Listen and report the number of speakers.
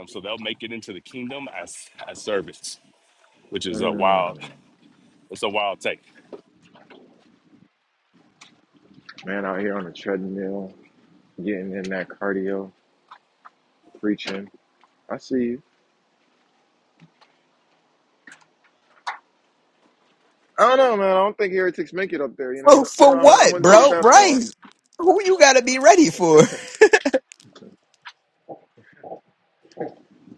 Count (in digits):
3